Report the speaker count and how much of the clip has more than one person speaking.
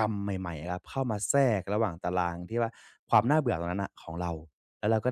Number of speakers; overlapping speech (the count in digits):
1, no overlap